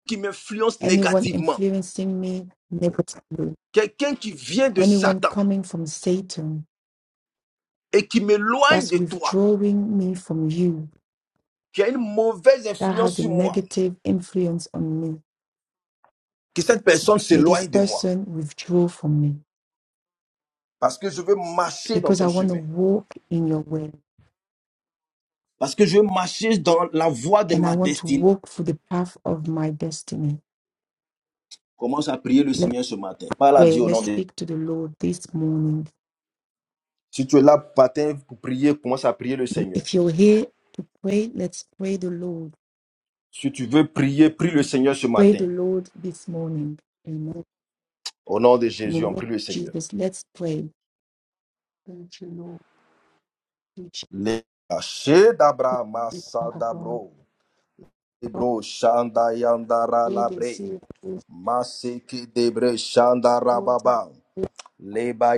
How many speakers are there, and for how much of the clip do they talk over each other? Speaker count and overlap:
two, about 14%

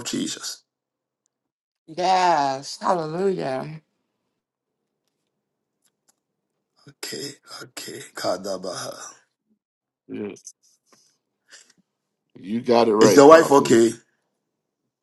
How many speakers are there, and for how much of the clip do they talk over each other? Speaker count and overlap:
three, about 5%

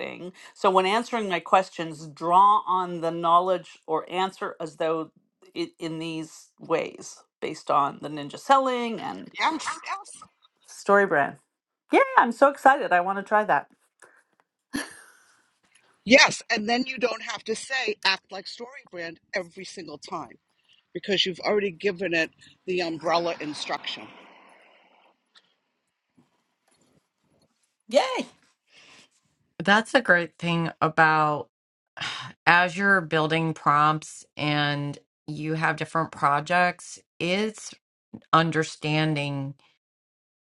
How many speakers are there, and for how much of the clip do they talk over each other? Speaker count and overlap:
three, no overlap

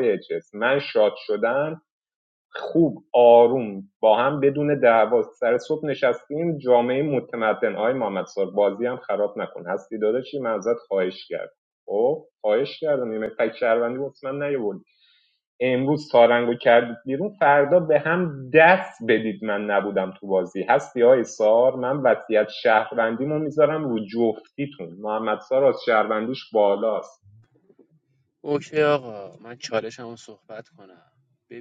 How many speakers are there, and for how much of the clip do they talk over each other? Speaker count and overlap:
two, no overlap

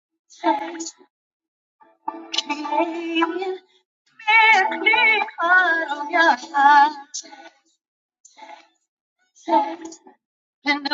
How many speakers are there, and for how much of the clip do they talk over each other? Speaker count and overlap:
one, no overlap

